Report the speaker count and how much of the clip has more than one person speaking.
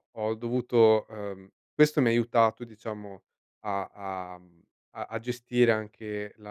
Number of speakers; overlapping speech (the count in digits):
1, no overlap